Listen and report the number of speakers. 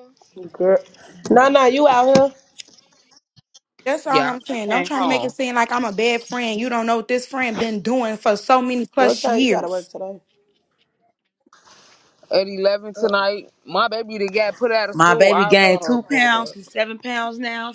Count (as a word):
four